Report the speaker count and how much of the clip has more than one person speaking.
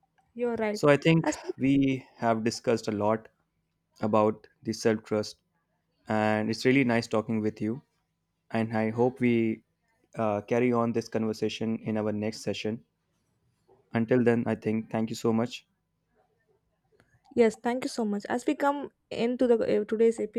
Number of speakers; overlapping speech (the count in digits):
2, about 1%